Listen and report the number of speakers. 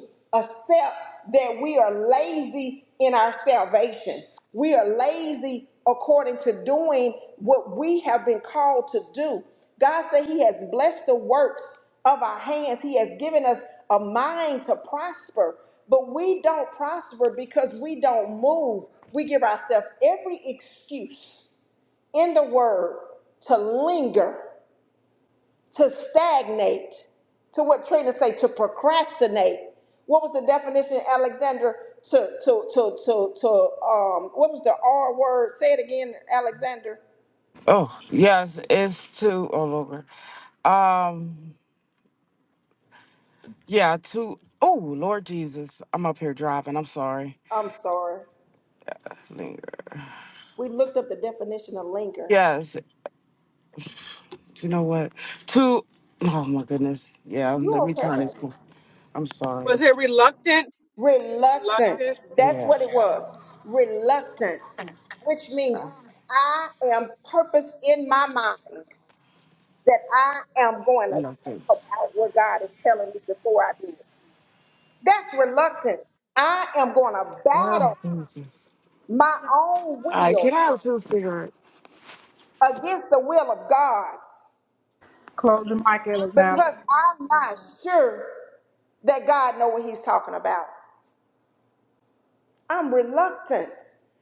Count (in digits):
4